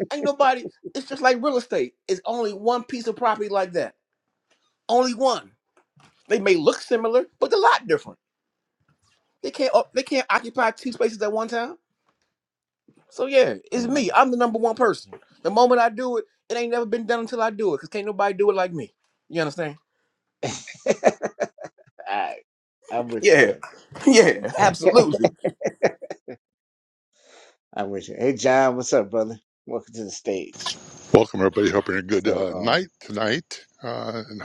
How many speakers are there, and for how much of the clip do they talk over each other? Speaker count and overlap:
three, about 3%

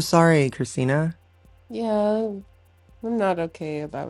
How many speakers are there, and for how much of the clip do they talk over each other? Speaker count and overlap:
two, no overlap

